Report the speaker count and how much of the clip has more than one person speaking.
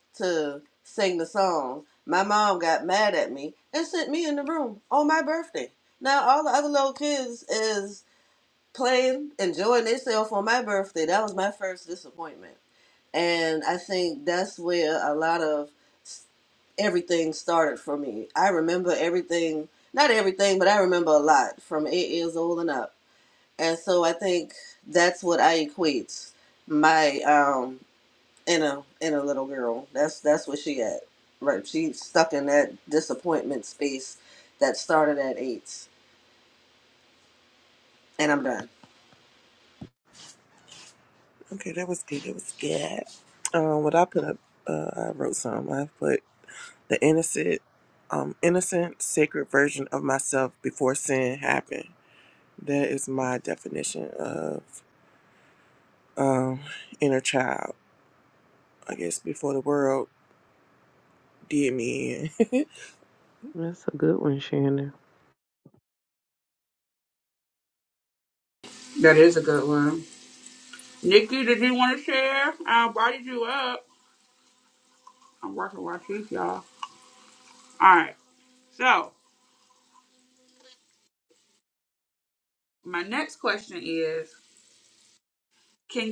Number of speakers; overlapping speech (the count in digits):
4, no overlap